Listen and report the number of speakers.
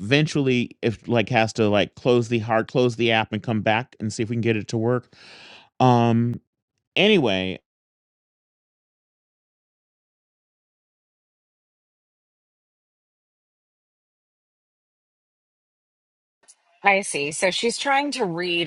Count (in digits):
2